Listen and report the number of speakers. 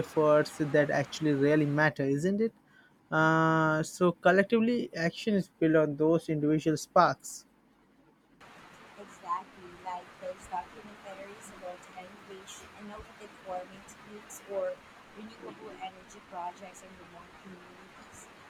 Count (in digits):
2